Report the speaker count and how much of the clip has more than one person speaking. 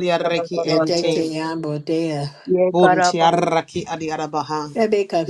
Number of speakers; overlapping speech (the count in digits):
3, about 24%